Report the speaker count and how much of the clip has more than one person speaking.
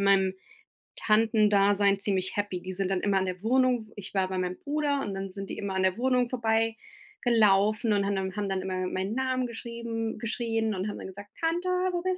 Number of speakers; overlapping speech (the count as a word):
one, no overlap